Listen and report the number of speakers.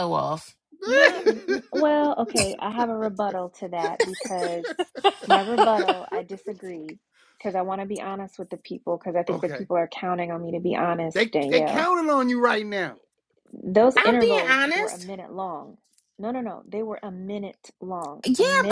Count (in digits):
3